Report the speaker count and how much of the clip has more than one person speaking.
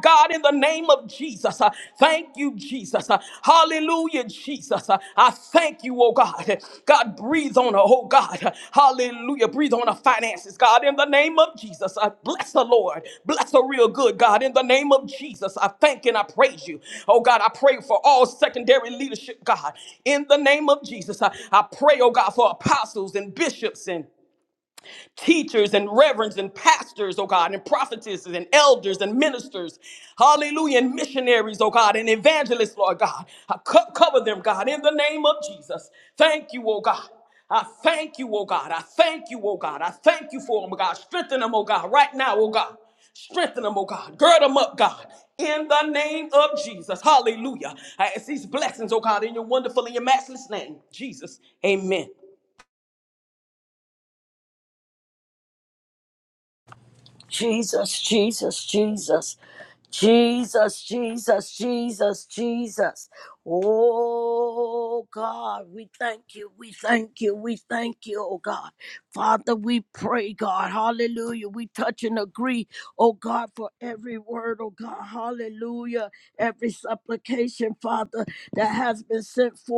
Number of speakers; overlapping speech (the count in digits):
2, no overlap